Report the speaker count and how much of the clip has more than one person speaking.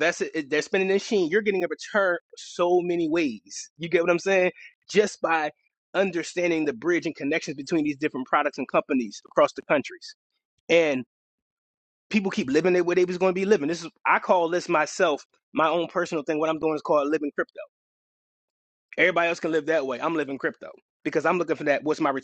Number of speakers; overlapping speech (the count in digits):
1, no overlap